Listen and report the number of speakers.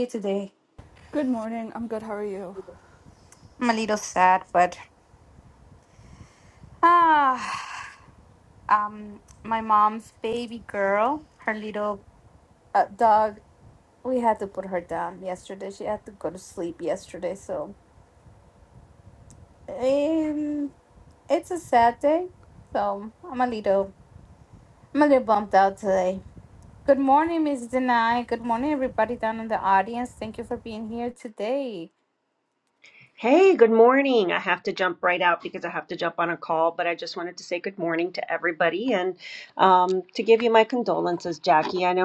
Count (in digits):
3